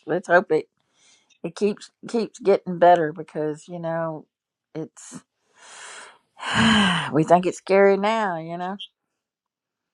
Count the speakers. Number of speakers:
one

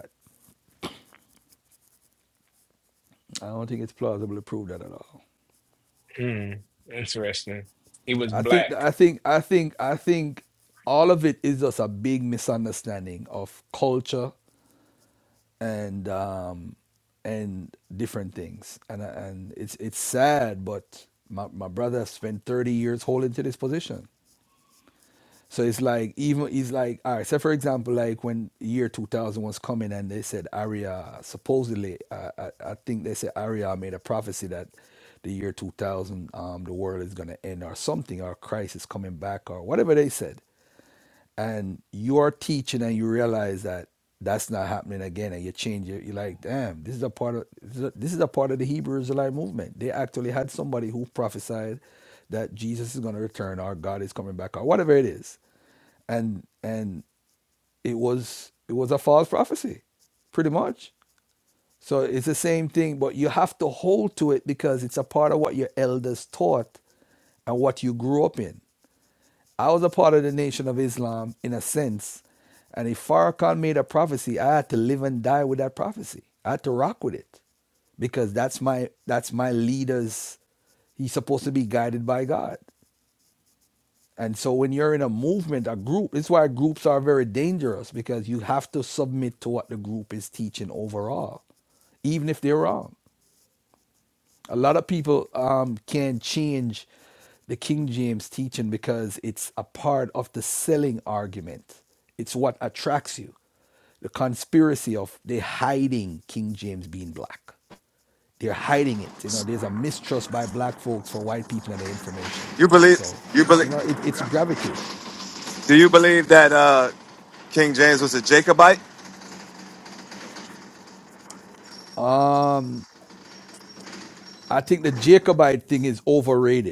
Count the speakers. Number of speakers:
three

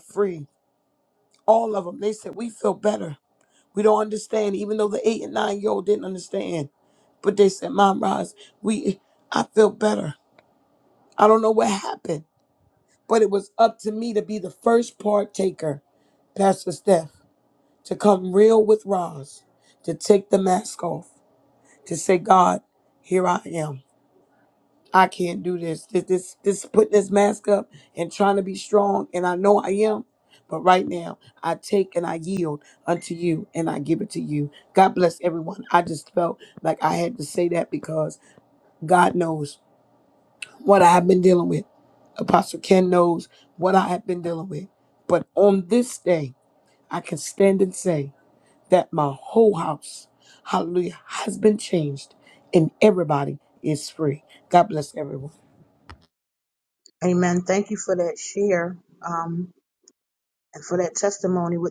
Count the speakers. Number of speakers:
two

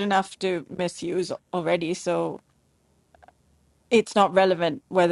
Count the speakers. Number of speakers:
one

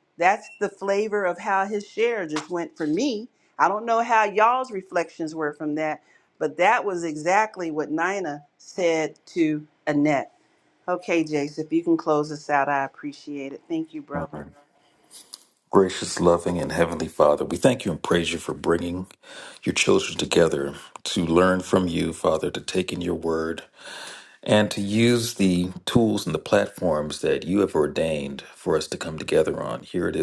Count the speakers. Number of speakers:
two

